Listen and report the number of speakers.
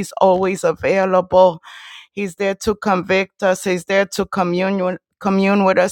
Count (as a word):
one